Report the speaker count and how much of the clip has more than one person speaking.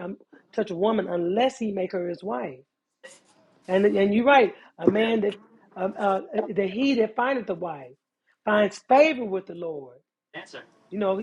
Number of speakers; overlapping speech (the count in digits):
1, no overlap